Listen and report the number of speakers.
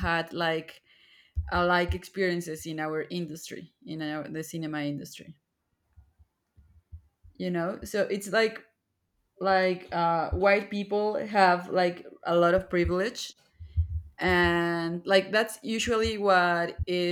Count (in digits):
1